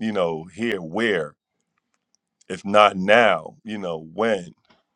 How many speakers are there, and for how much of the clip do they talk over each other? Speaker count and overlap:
1, no overlap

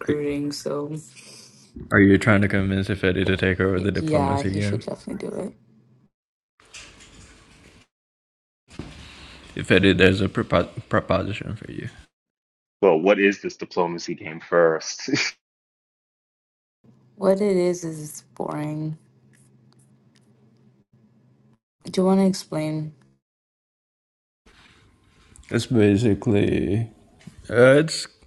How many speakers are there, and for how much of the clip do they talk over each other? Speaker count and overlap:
3, about 4%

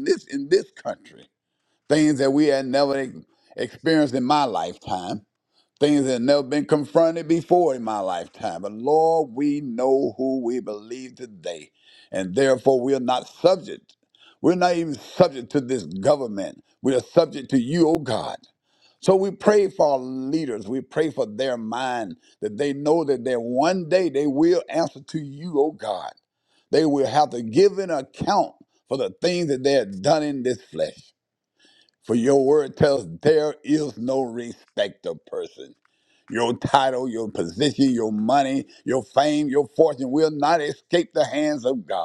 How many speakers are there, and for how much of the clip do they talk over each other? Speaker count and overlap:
1, no overlap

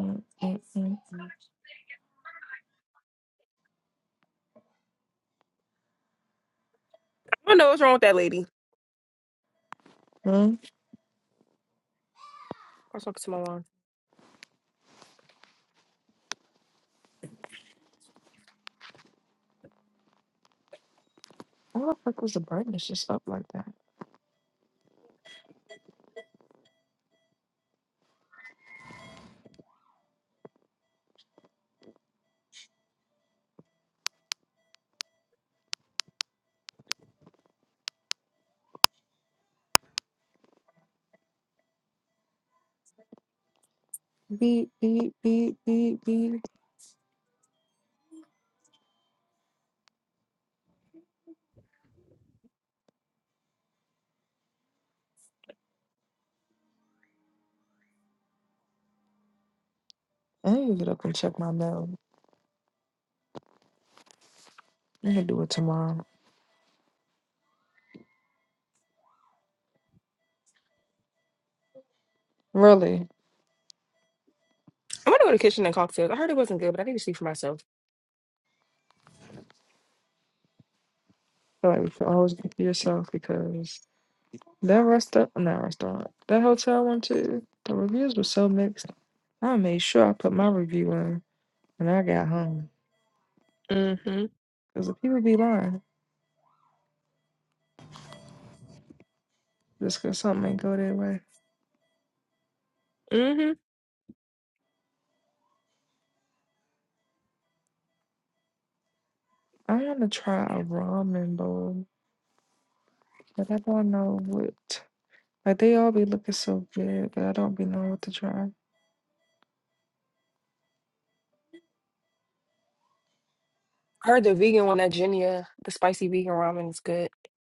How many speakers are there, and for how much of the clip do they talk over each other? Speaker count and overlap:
2, no overlap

